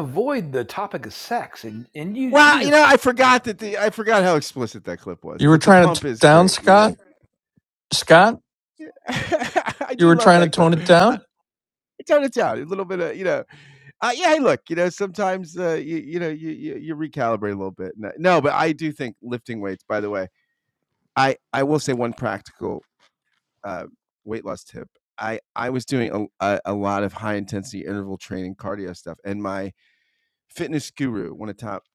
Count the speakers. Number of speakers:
3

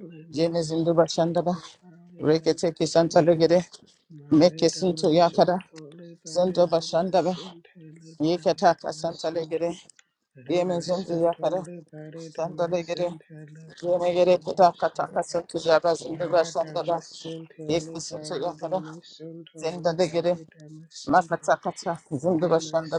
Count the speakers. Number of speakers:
2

